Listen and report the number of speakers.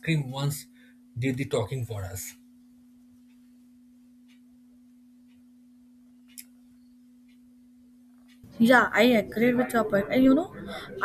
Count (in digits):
2